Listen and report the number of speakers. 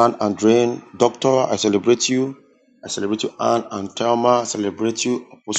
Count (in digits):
1